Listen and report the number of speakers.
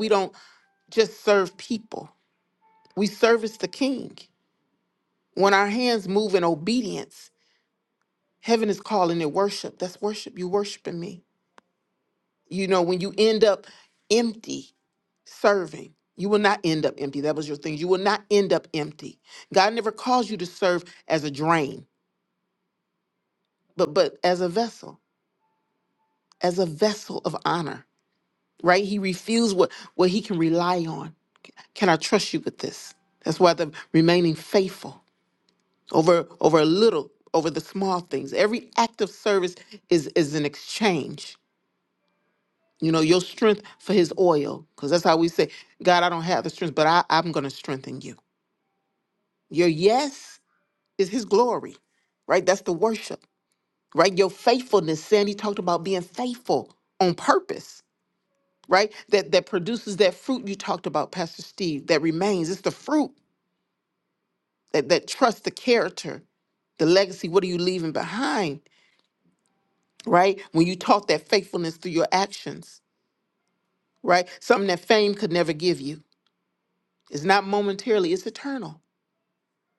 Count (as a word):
one